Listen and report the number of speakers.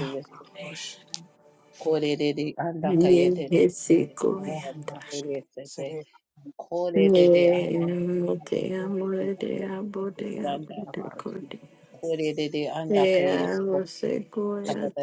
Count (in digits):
3